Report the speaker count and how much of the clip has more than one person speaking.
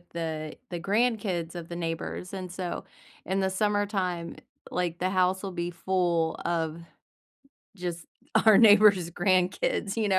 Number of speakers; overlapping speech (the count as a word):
one, no overlap